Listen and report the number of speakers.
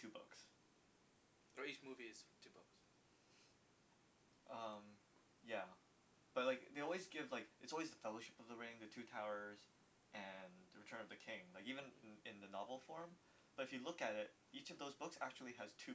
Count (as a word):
two